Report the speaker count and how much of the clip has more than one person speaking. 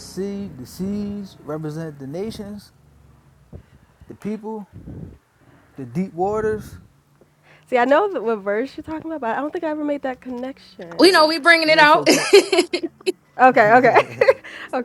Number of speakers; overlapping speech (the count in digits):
3, about 5%